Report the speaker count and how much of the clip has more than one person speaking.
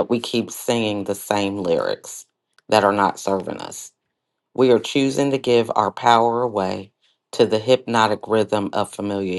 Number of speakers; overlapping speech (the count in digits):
1, no overlap